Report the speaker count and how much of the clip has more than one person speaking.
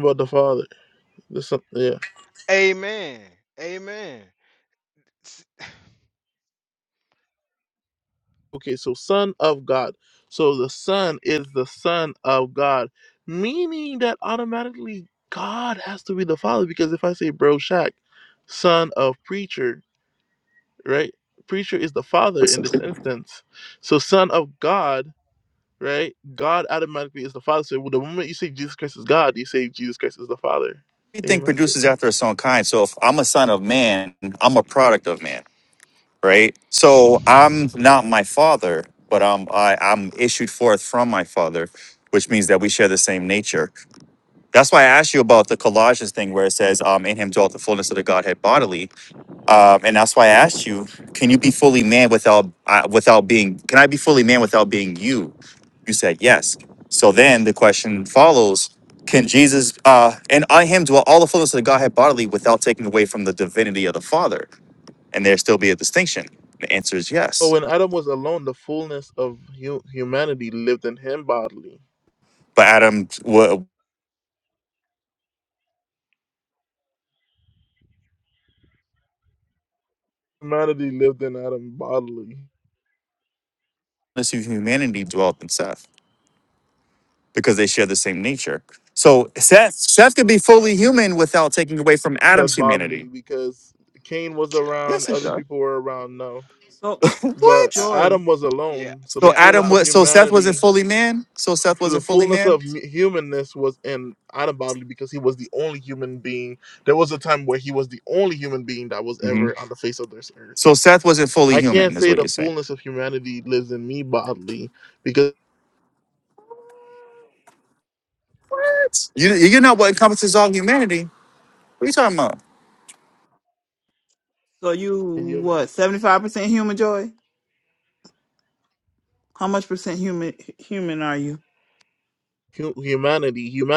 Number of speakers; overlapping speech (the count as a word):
four, about 5%